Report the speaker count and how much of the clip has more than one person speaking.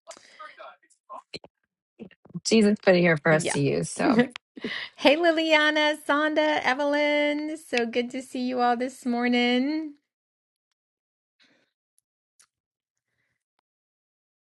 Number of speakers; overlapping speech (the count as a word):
two, about 2%